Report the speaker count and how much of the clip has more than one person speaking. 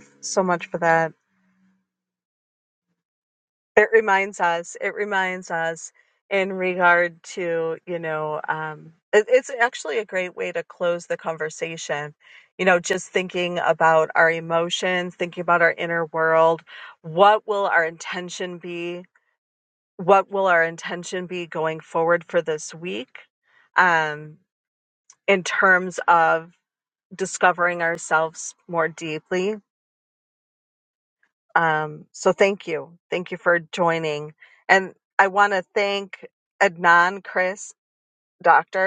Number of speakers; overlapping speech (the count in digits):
1, no overlap